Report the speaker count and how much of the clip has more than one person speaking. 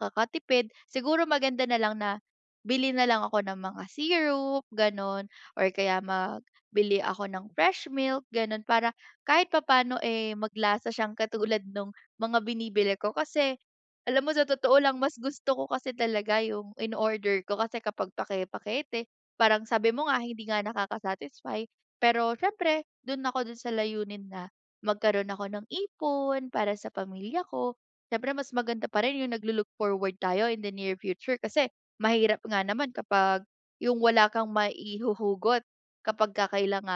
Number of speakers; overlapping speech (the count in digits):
1, no overlap